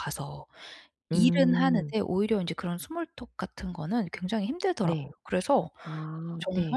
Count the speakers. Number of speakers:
2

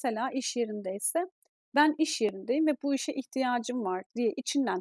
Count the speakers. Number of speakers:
1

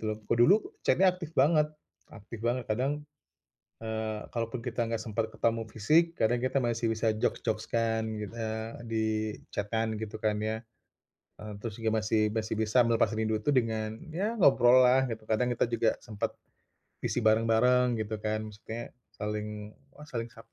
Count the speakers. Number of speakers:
1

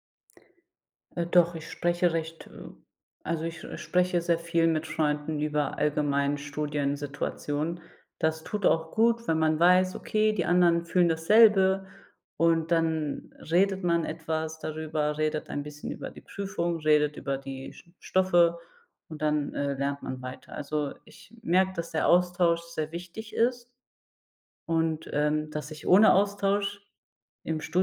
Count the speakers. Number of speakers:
1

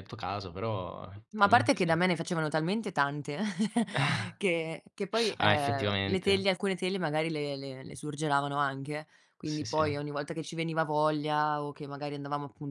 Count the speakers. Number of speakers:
2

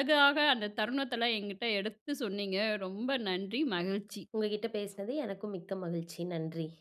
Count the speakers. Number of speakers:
2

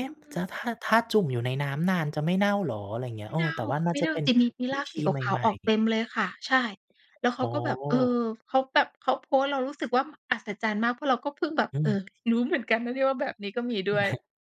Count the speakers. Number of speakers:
2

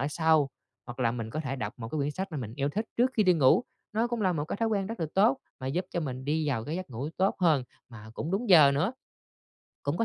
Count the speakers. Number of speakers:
1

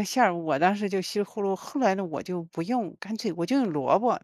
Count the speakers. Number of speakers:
1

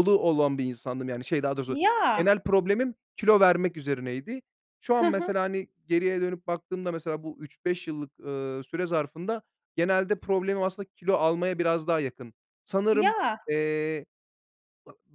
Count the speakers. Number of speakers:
2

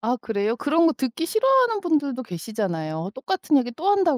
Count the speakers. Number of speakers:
1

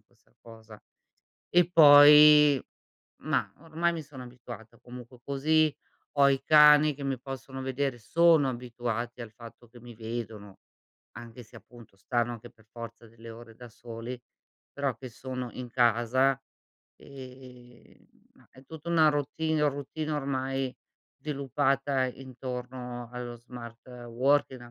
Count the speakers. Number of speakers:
1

